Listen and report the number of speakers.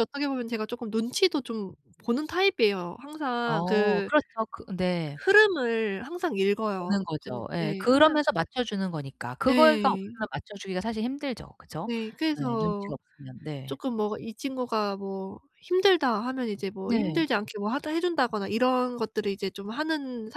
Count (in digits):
2